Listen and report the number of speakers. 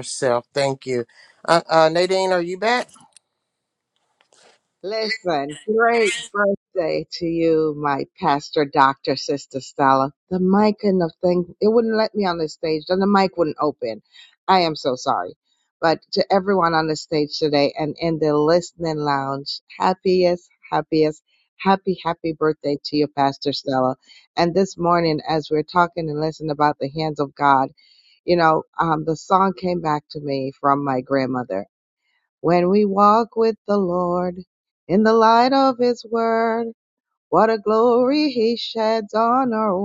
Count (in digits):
2